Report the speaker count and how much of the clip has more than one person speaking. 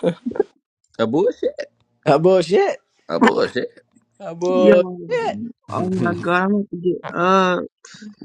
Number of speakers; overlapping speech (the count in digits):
3, about 5%